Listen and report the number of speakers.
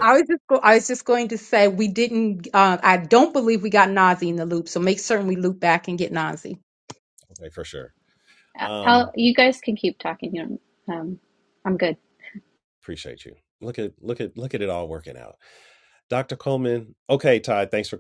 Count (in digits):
3